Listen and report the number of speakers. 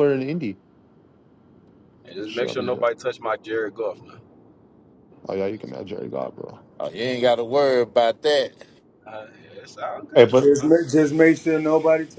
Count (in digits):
4